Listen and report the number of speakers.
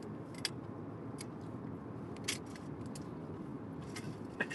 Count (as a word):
zero